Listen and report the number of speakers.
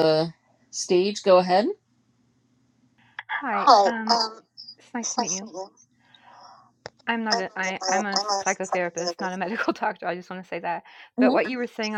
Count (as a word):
two